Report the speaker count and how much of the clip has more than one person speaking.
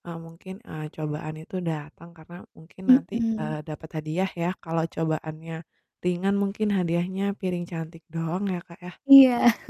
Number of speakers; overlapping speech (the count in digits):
2, about 7%